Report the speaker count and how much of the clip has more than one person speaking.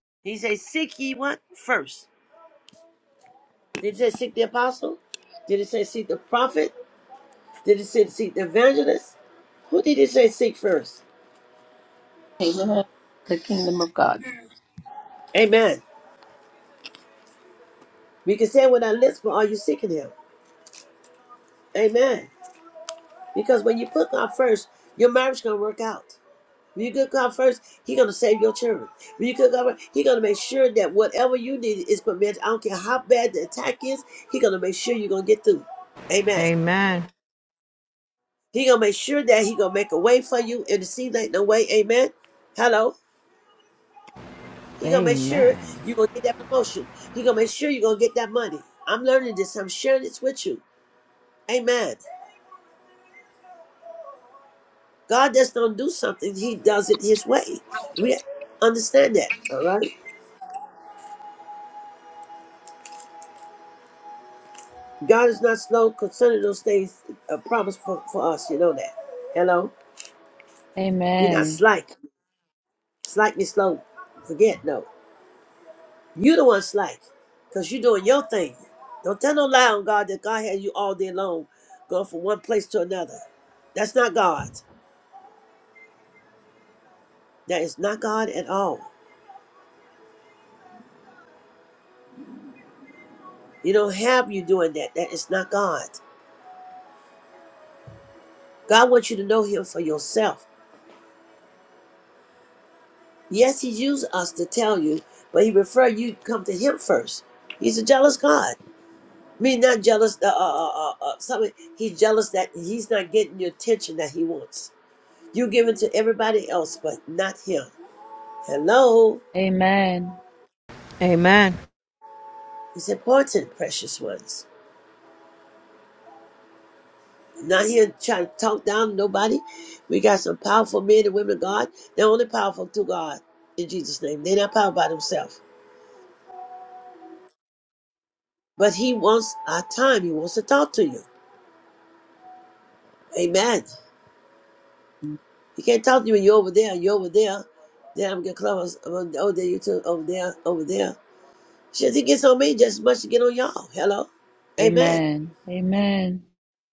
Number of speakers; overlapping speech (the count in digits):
4, about 1%